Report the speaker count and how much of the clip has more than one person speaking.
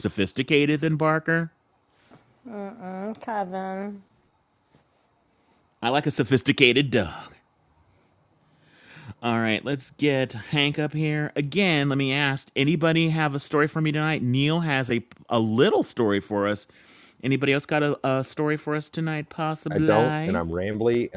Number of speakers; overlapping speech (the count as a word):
three, about 3%